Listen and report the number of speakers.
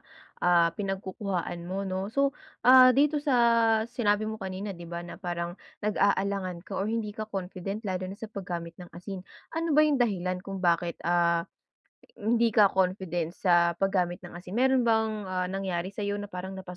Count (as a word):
one